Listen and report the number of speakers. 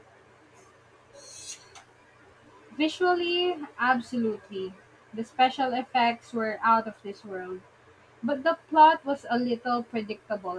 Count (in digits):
1